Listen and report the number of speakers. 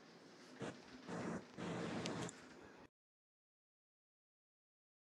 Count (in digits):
0